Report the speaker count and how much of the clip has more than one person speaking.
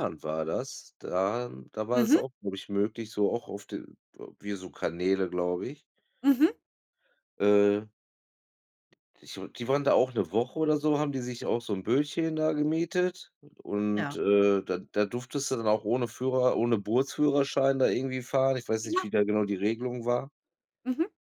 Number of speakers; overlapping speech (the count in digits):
2, about 4%